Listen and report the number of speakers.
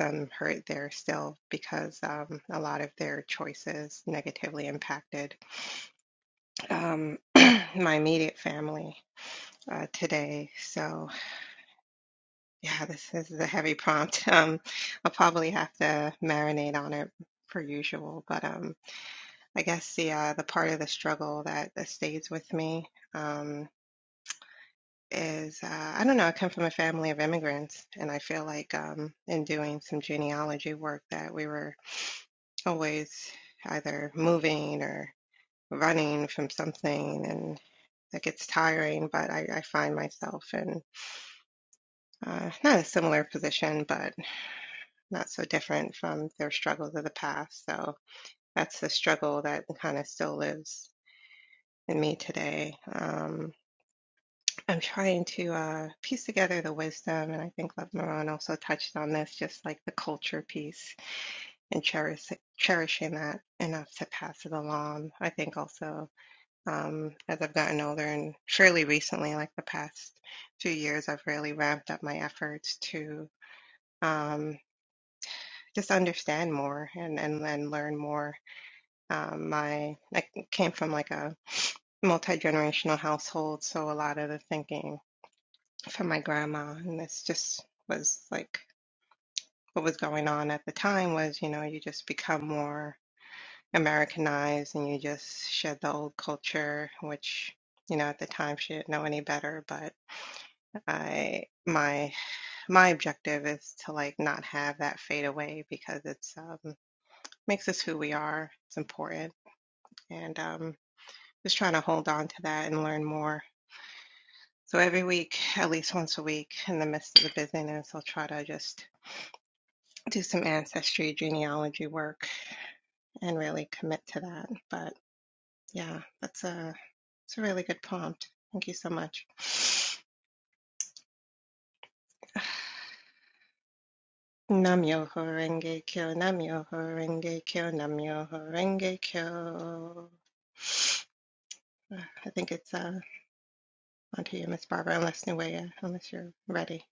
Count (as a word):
one